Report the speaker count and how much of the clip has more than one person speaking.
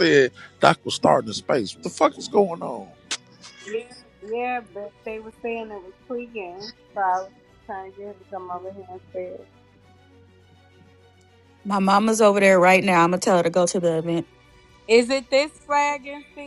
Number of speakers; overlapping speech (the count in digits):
3, no overlap